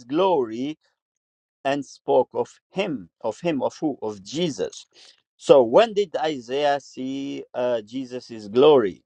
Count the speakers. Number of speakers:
one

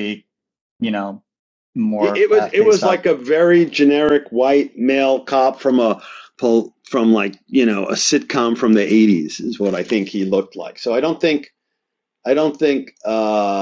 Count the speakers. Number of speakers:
two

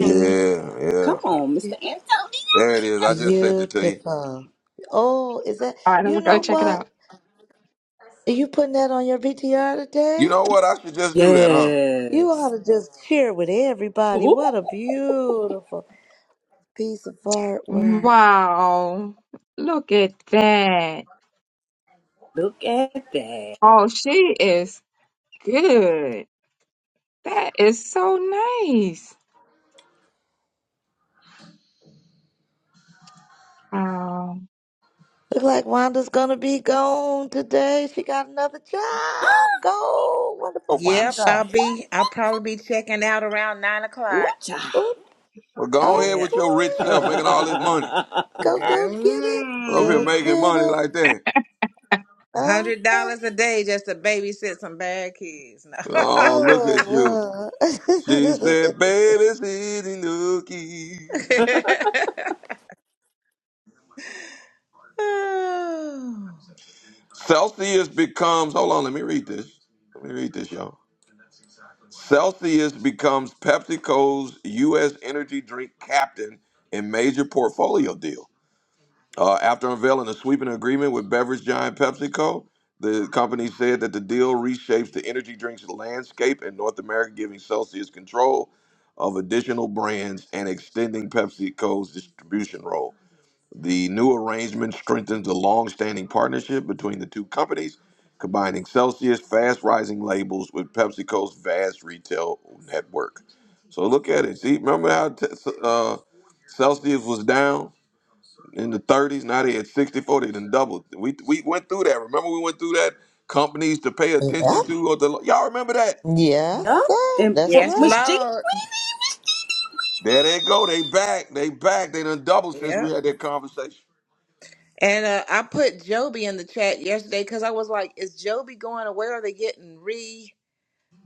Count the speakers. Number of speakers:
five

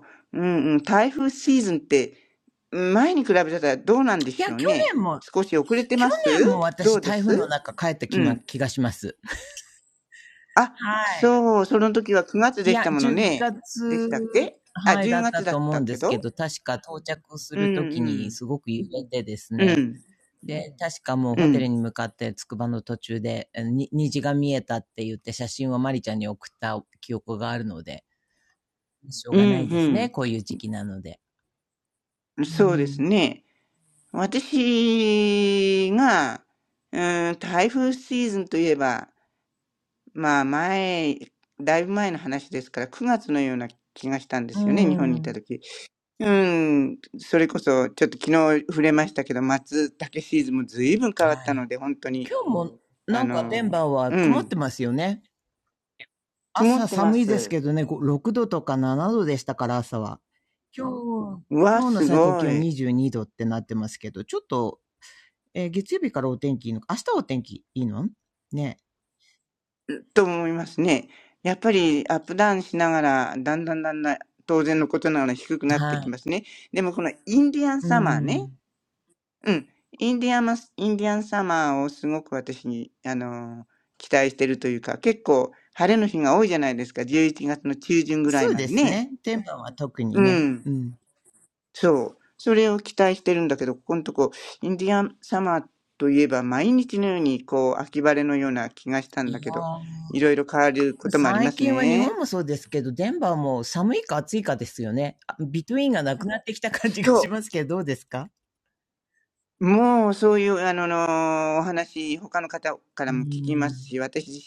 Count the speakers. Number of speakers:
two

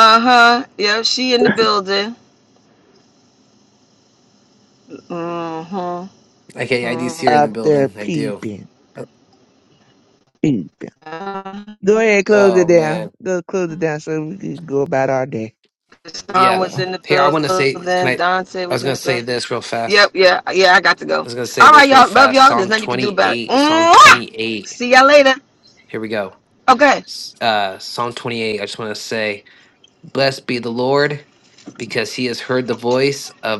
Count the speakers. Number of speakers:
three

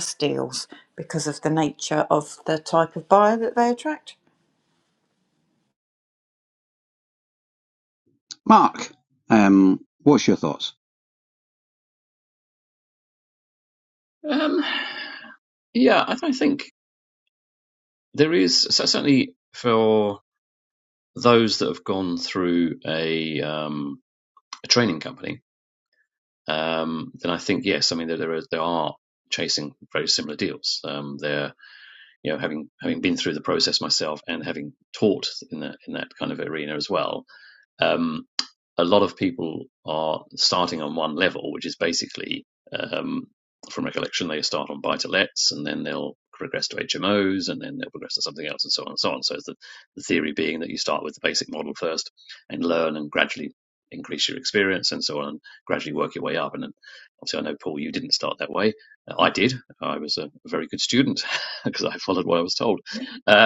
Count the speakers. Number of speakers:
three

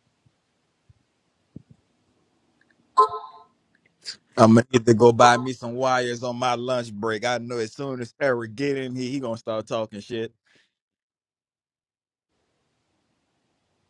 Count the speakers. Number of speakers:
one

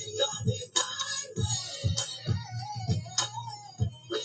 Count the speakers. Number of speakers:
zero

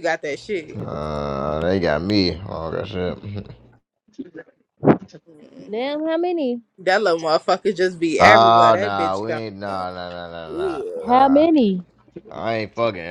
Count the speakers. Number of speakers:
three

